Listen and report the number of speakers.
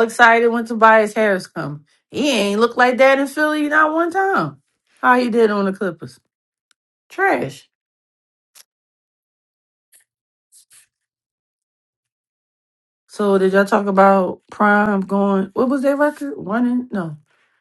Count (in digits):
1